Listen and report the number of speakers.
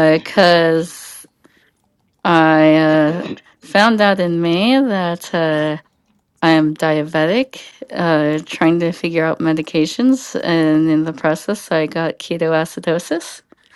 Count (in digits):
1